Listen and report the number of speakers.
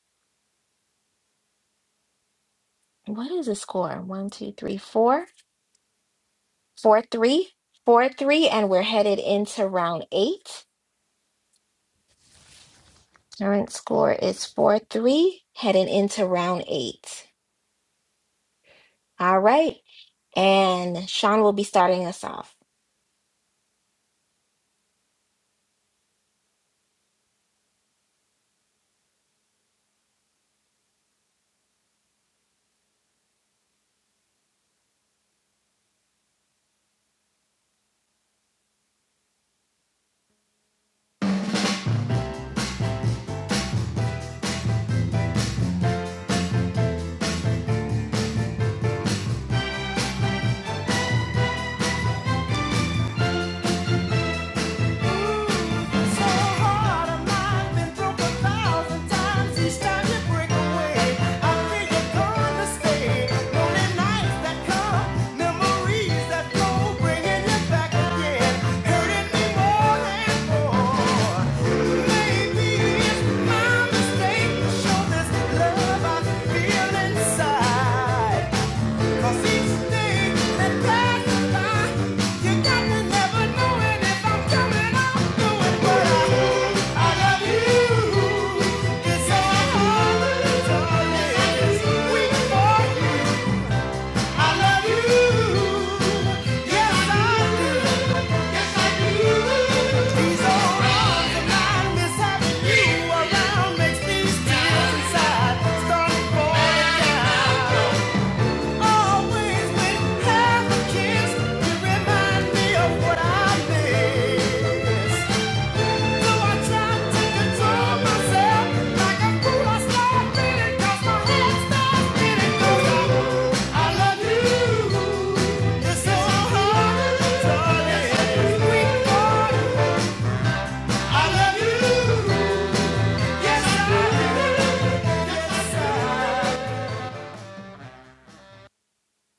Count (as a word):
two